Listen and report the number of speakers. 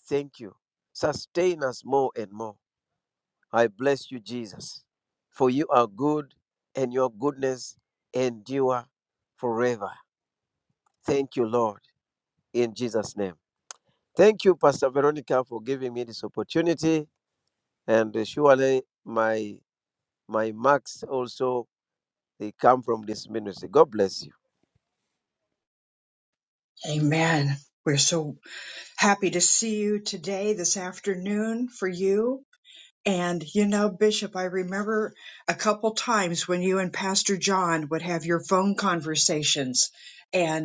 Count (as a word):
two